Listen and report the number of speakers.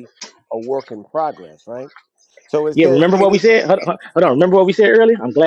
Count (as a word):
two